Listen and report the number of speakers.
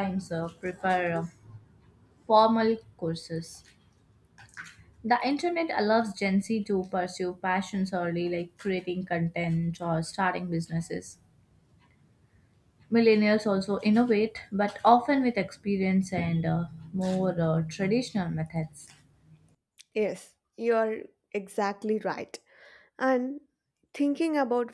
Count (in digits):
2